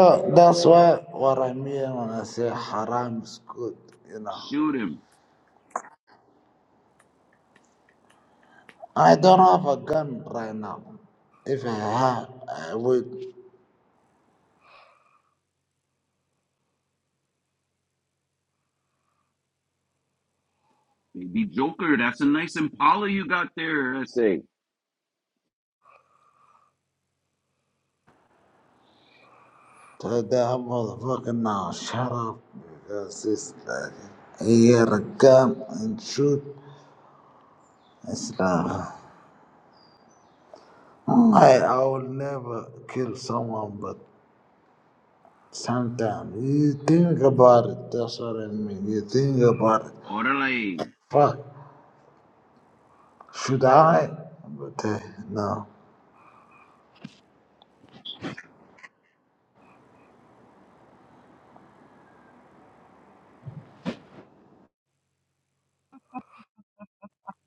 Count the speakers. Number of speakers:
2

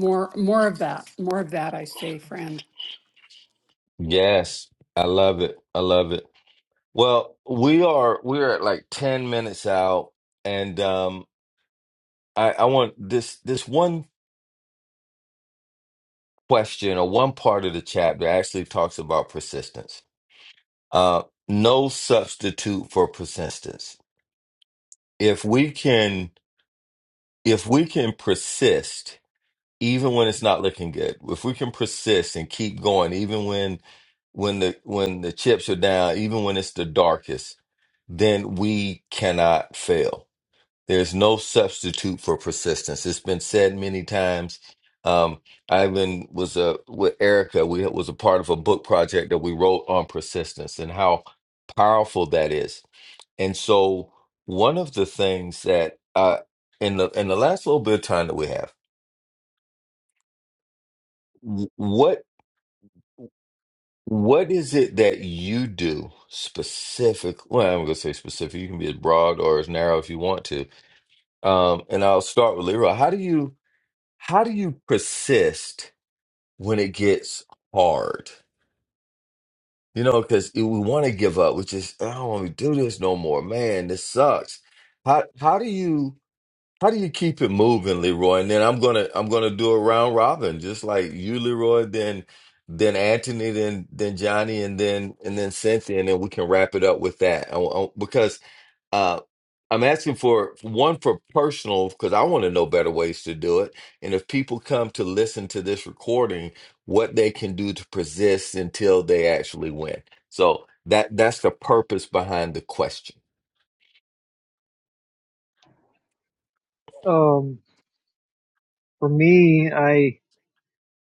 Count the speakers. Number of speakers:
3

